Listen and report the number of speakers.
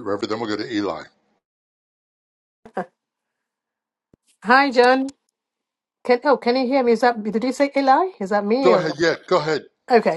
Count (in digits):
2